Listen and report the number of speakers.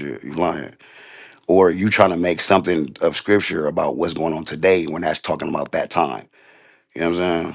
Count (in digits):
1